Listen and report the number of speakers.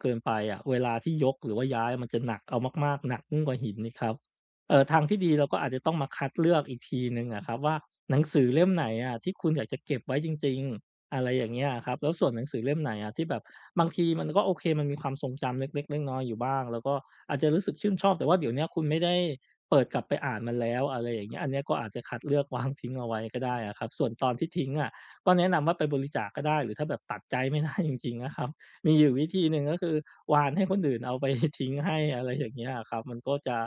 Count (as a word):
one